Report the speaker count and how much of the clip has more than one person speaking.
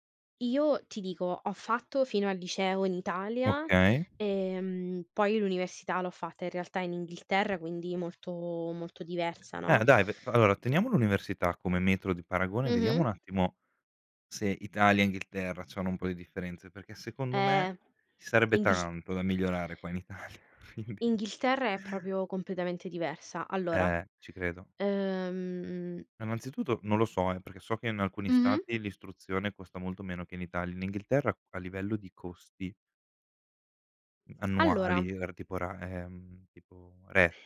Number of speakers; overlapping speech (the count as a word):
two, about 7%